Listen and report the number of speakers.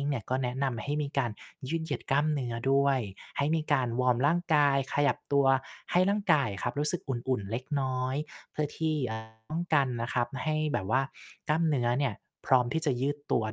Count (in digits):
1